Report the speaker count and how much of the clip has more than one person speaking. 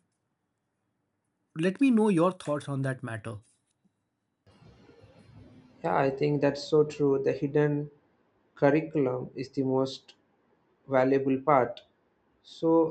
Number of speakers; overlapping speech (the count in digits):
2, no overlap